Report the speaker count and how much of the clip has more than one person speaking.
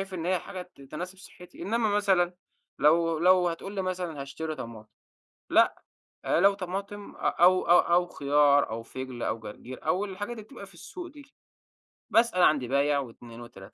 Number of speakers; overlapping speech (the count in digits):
1, no overlap